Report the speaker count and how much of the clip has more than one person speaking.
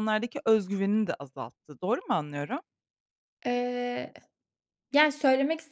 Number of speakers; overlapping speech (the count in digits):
2, no overlap